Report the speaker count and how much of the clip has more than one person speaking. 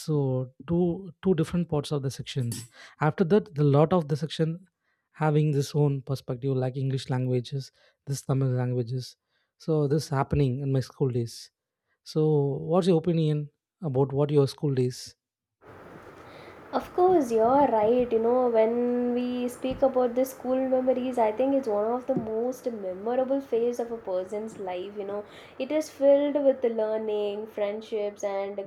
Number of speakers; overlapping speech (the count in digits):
2, no overlap